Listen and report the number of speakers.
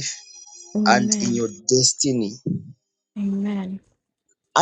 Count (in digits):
2